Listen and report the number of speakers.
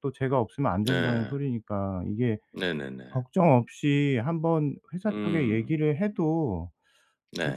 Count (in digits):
2